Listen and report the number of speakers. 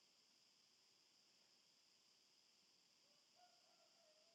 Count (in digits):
0